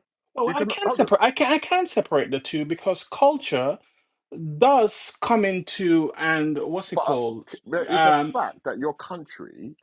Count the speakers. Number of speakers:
2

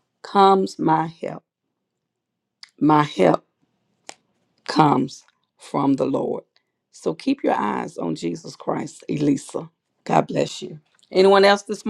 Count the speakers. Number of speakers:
1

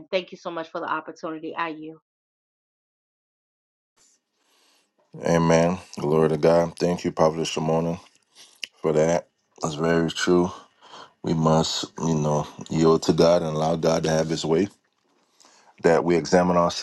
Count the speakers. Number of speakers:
2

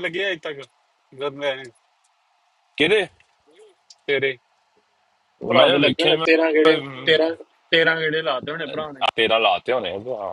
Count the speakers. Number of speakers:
3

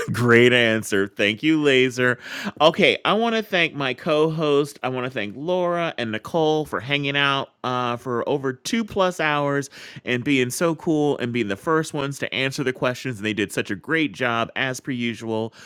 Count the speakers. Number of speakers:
1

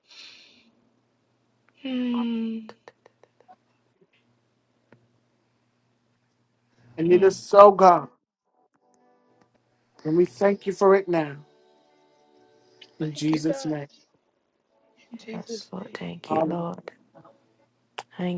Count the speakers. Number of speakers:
3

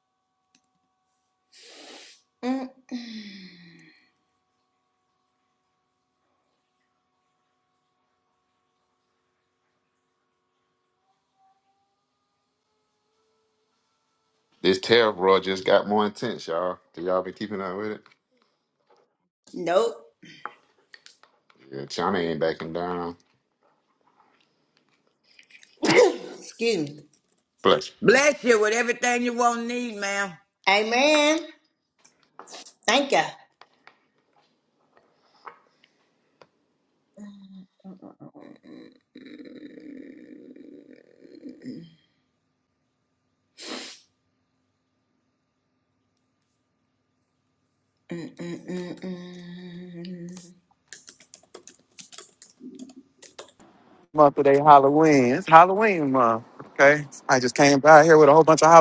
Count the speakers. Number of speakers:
4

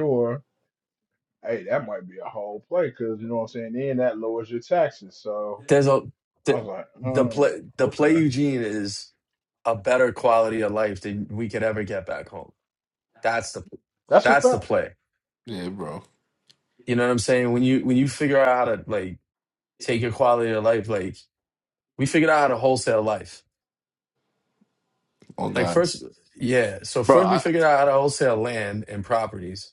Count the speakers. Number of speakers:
3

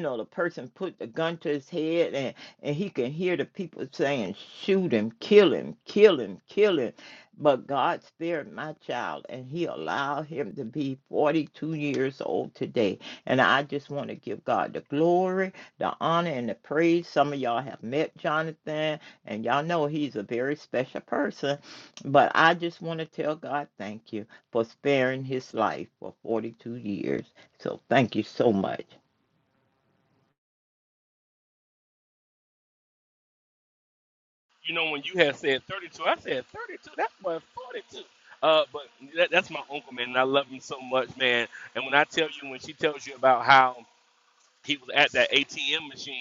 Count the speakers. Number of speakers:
2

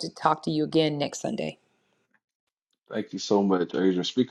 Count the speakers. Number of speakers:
2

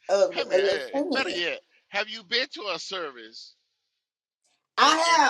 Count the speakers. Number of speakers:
2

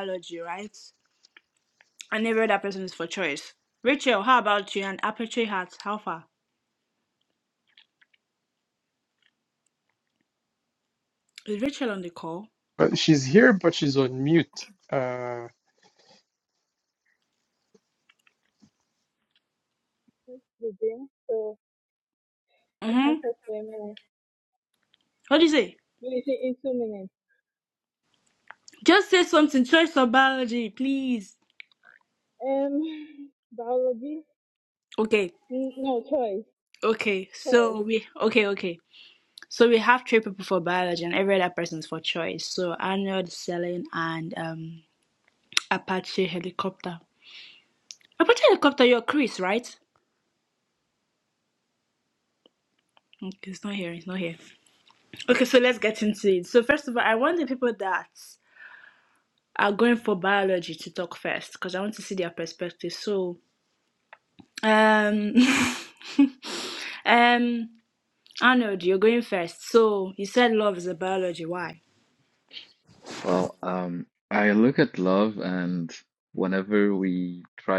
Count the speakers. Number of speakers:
4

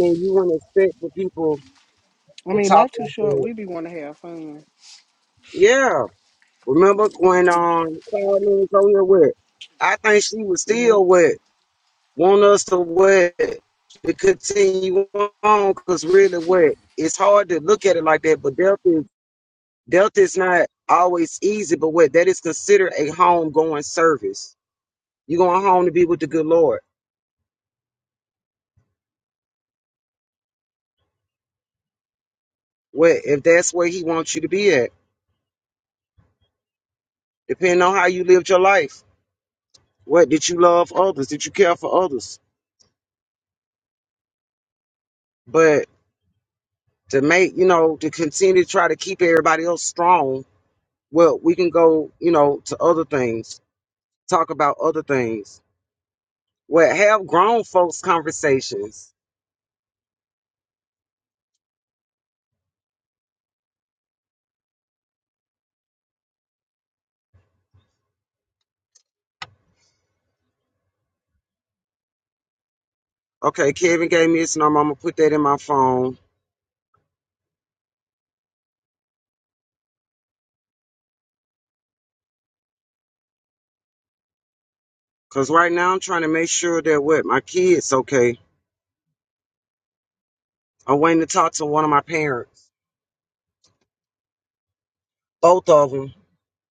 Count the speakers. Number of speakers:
2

